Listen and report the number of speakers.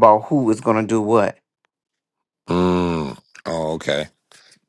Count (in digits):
2